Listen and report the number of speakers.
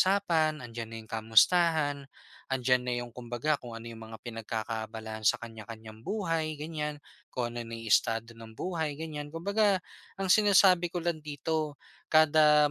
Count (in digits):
1